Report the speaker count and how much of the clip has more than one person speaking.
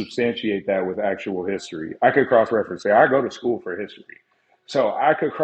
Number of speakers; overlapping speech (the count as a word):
one, no overlap